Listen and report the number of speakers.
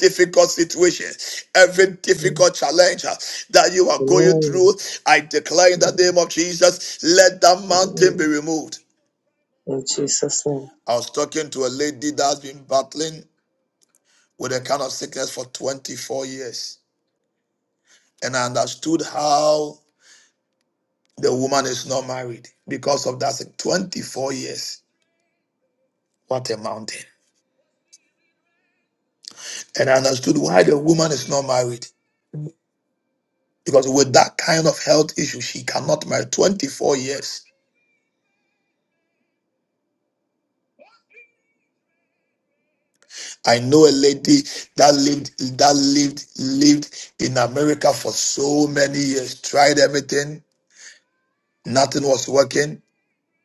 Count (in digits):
2